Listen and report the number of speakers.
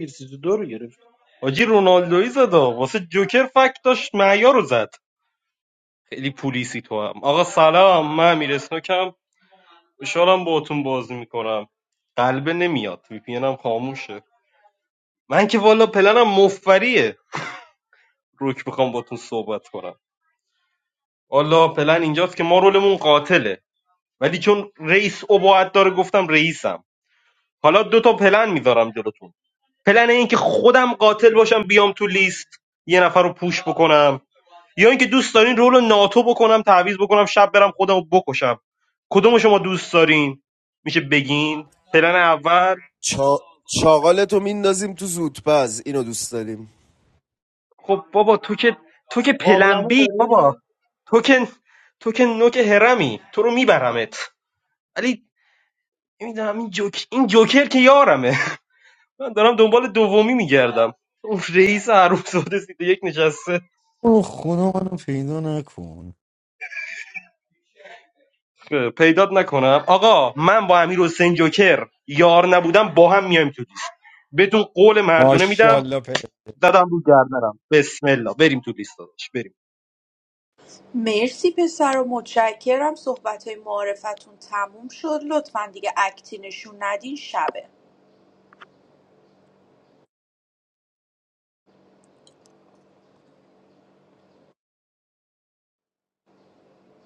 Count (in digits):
5